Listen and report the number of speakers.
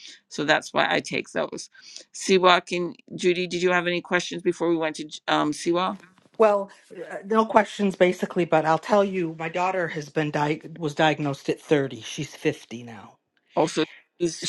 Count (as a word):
two